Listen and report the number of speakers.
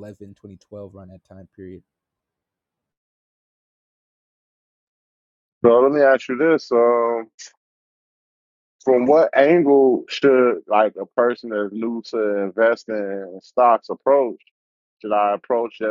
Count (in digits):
2